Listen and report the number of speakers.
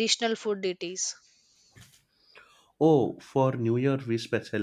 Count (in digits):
2